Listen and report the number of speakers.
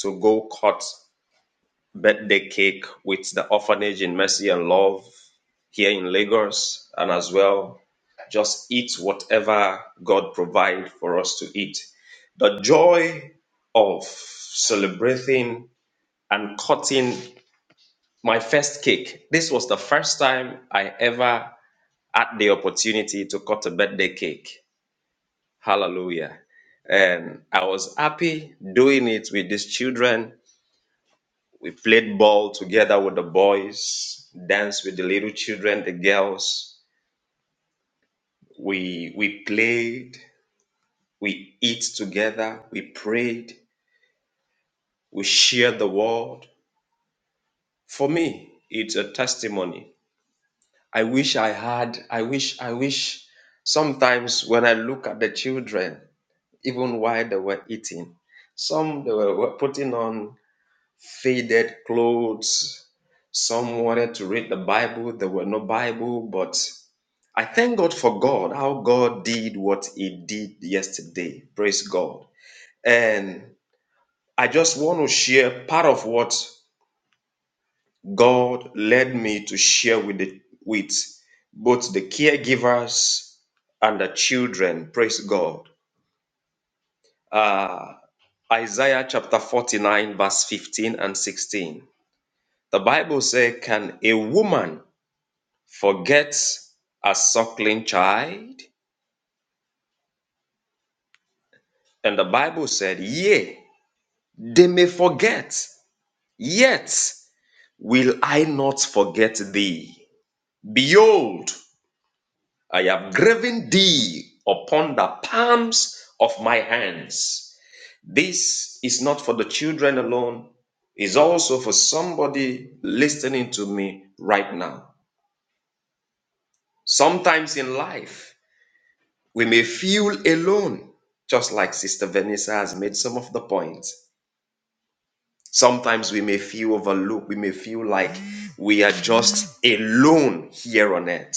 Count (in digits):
1